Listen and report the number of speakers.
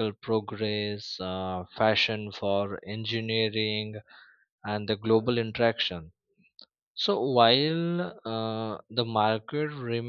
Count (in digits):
1